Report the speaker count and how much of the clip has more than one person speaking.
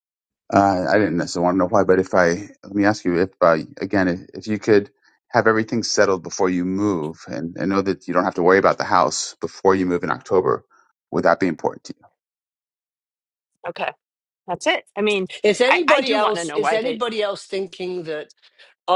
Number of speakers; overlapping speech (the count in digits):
3, about 7%